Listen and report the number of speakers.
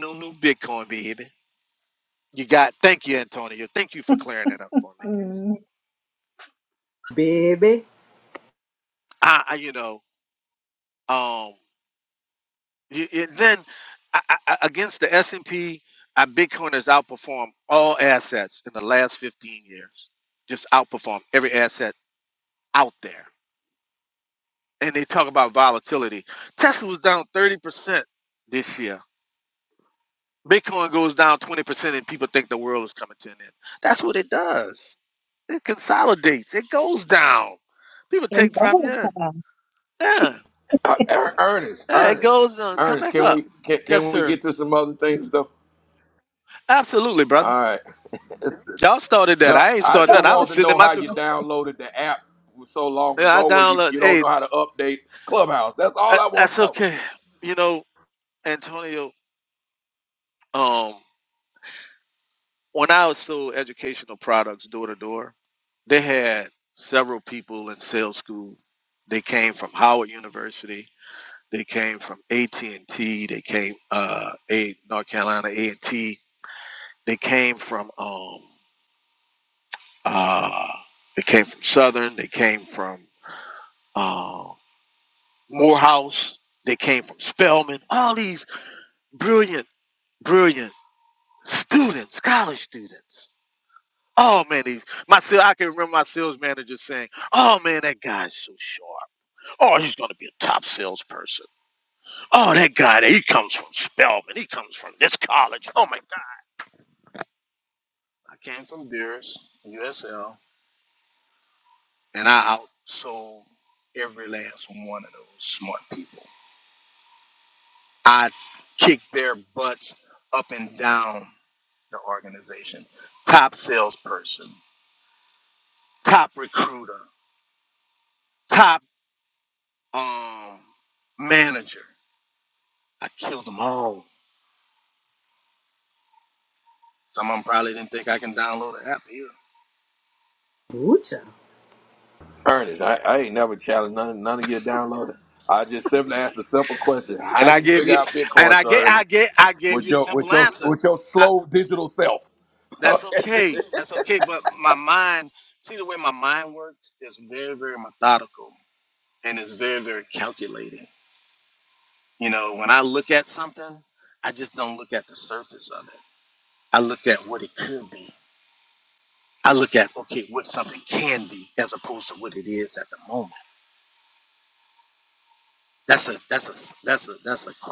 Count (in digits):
4